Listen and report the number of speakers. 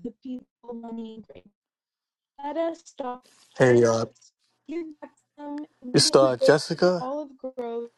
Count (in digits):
2